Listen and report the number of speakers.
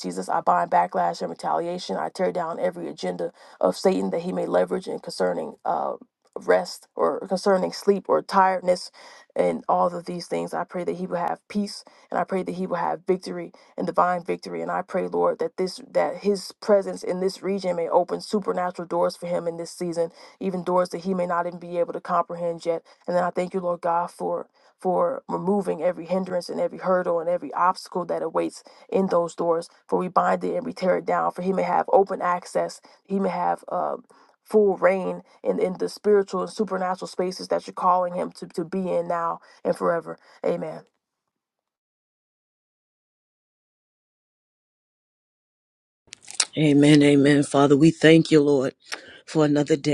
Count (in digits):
2